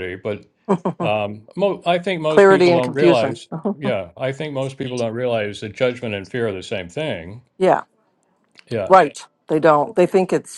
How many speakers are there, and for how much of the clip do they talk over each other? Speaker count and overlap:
2, about 12%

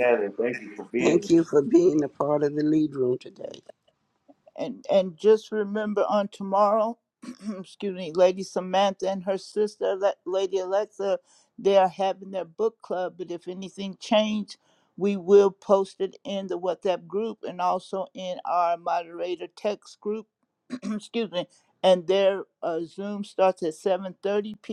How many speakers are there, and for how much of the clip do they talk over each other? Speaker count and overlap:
3, about 1%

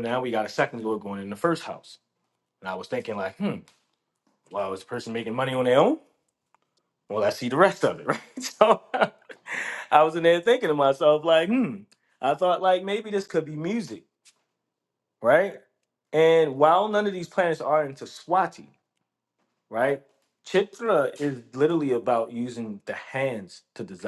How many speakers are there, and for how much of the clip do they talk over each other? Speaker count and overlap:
1, no overlap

